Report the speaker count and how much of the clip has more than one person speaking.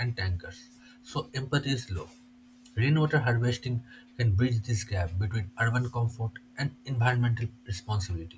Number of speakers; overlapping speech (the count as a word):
one, no overlap